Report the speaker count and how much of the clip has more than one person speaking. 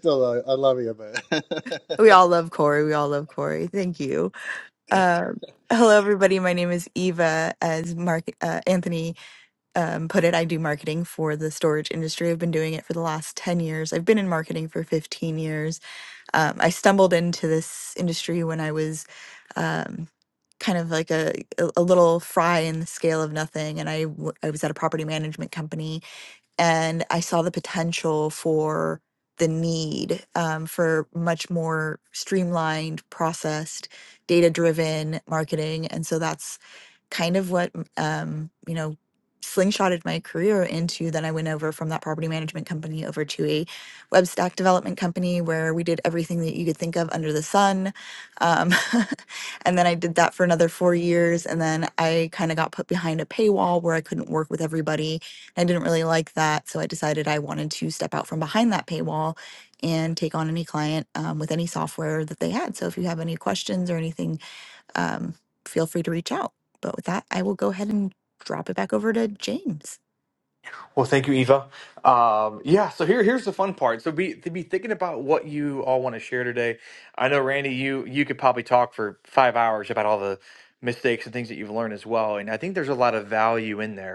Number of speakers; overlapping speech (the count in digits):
3, no overlap